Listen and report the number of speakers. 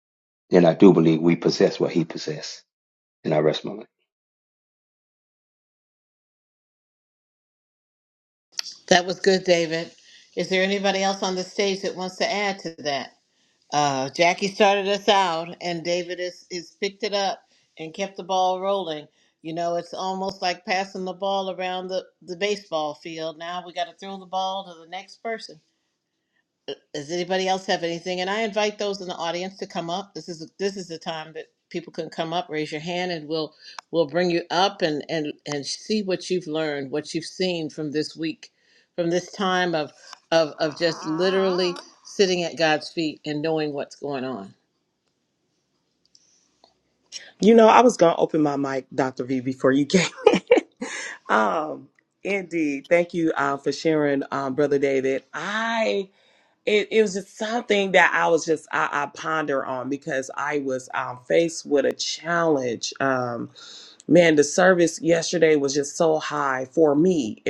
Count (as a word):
three